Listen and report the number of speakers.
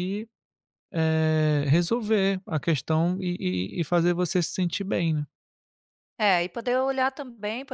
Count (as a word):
two